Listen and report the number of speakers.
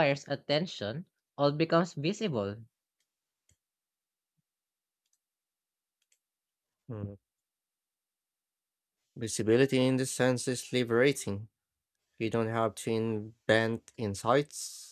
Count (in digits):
2